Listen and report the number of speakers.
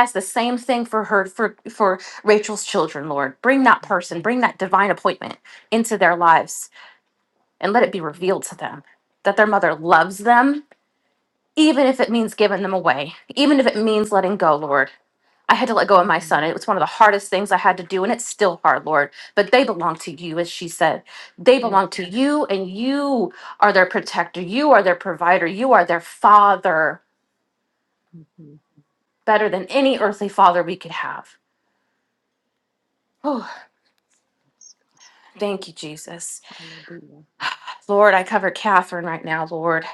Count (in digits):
2